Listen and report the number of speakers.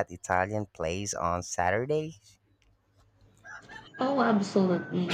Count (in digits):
2